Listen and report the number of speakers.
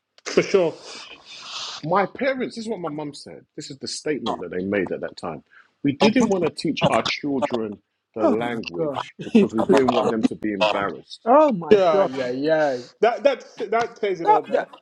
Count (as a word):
three